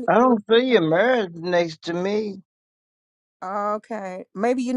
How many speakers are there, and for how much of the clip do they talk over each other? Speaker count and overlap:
2, about 7%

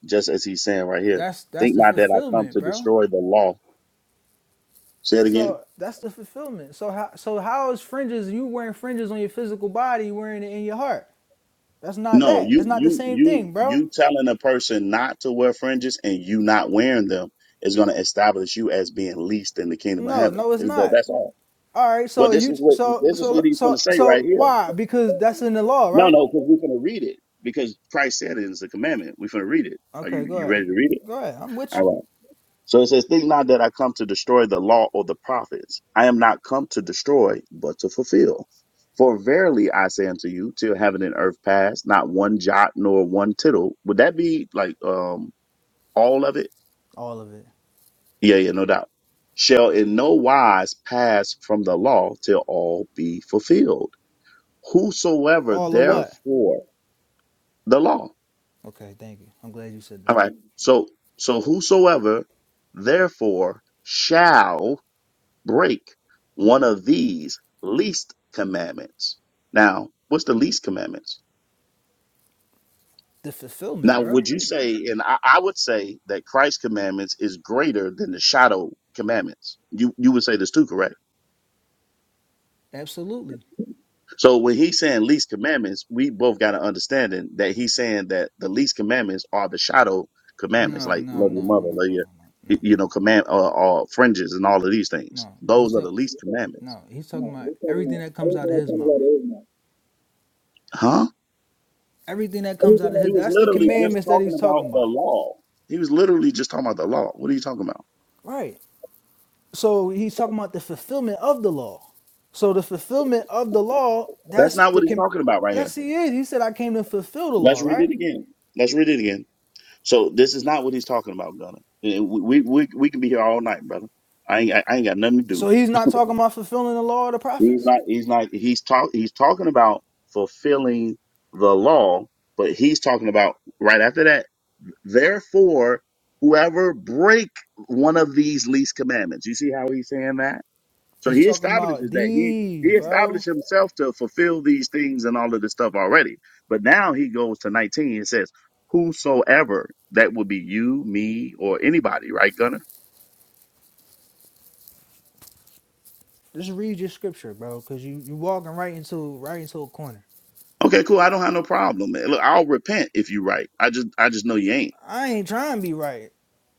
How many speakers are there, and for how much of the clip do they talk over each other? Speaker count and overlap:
2, about 9%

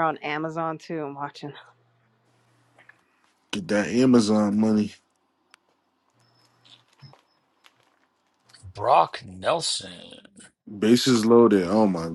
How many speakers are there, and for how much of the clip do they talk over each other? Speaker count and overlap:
3, no overlap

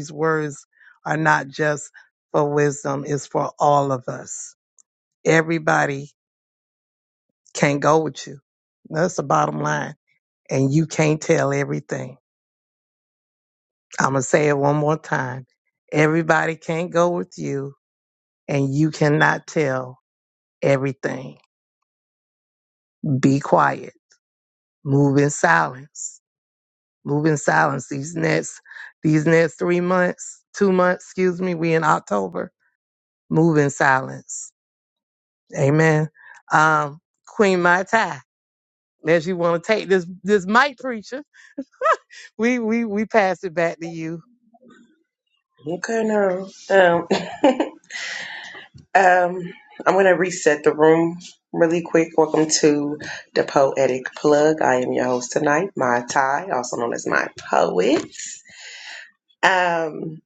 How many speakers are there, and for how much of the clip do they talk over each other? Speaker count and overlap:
2, no overlap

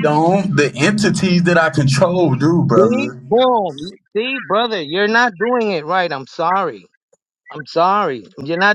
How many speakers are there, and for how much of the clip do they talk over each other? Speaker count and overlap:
2, about 5%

